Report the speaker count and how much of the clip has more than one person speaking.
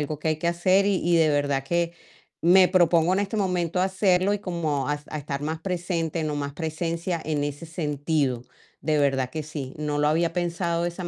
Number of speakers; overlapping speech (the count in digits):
1, no overlap